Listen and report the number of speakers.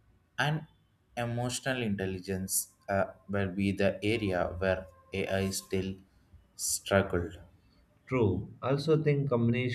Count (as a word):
two